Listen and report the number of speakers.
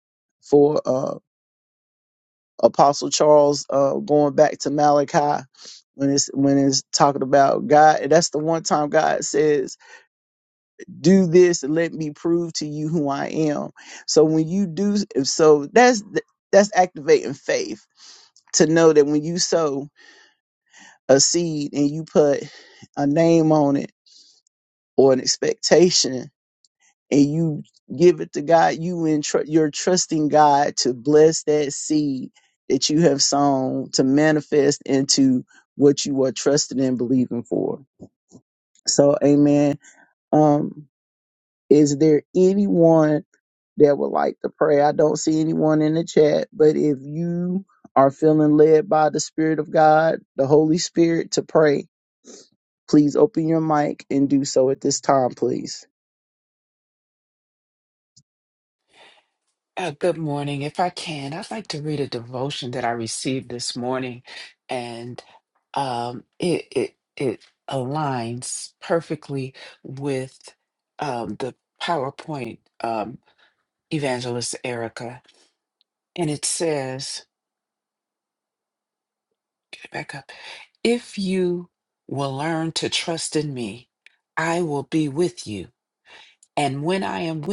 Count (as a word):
two